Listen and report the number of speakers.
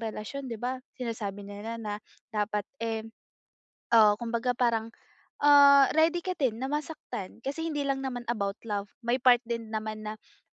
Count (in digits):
1